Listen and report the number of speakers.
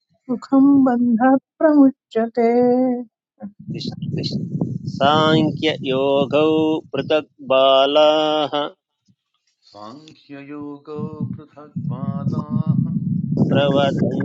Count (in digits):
3